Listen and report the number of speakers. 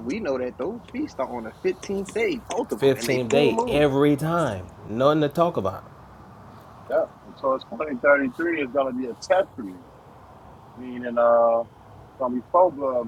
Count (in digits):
3